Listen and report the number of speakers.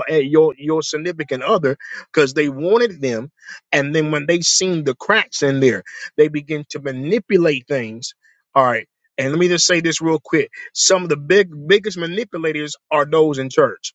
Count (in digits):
1